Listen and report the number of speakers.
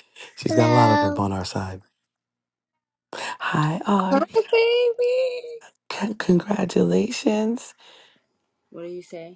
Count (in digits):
3